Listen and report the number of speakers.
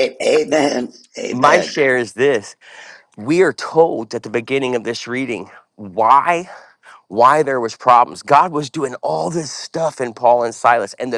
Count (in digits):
2